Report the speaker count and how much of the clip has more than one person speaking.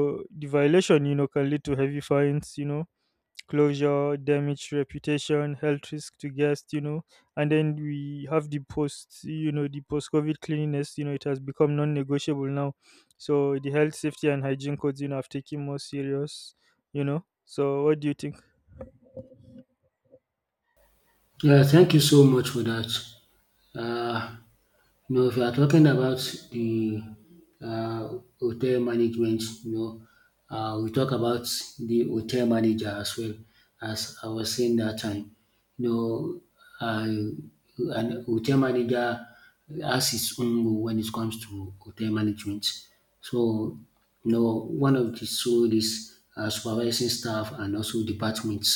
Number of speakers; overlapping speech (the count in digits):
2, no overlap